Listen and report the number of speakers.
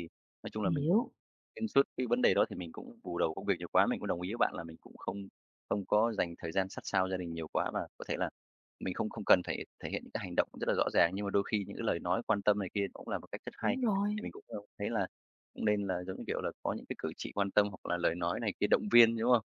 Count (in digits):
2